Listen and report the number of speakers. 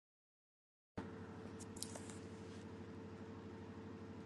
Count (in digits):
0